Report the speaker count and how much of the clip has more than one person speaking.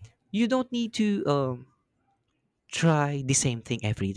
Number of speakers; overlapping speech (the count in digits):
1, no overlap